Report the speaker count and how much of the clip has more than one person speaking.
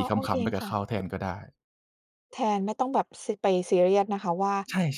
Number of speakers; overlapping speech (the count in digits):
2, about 14%